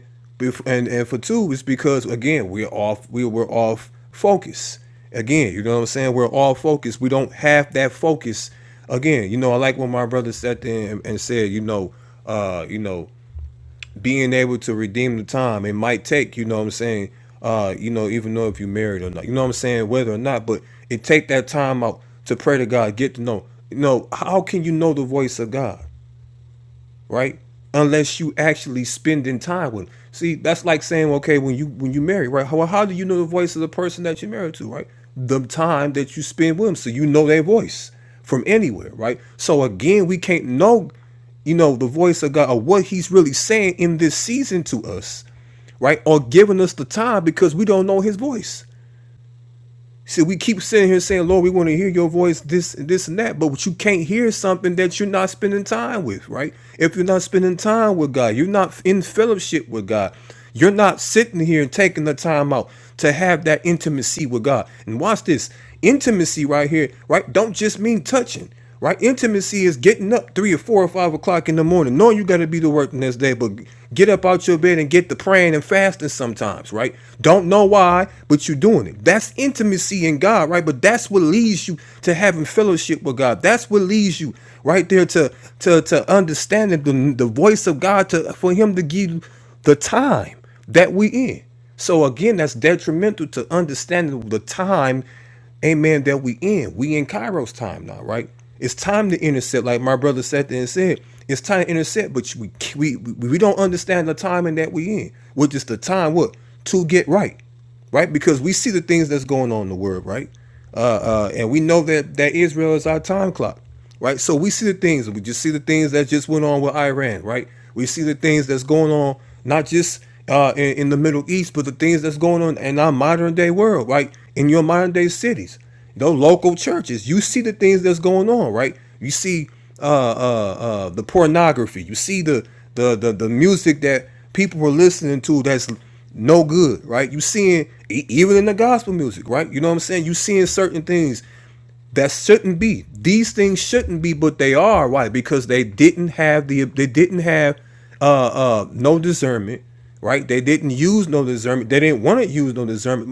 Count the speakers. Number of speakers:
1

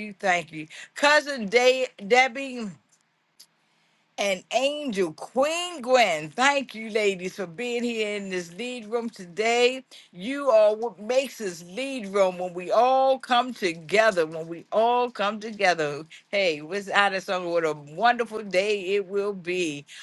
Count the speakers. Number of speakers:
1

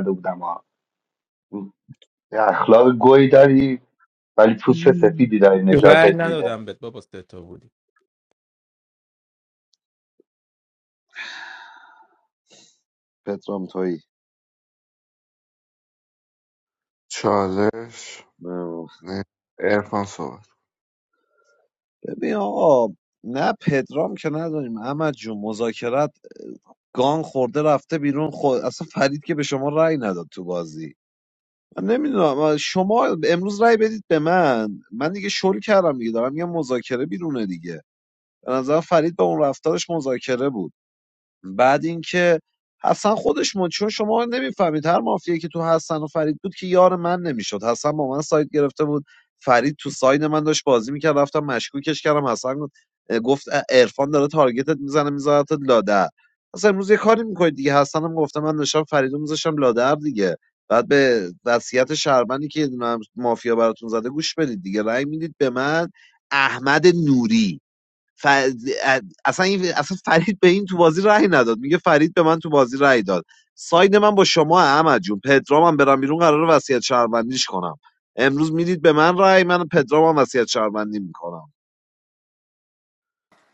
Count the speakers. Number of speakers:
4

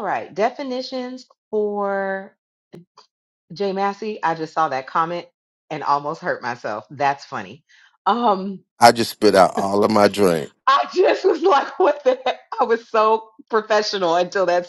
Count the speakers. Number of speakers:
2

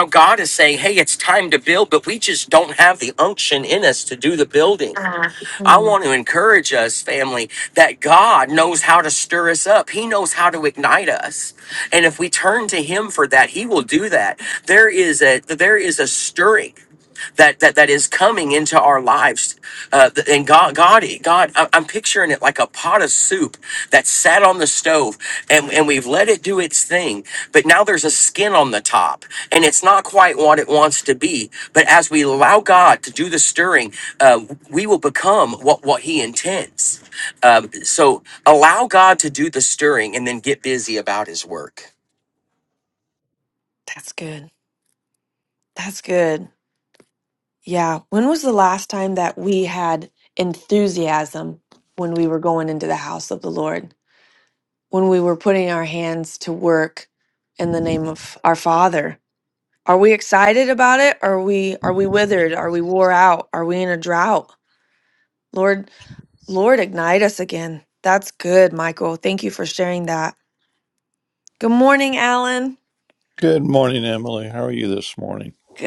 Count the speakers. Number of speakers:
3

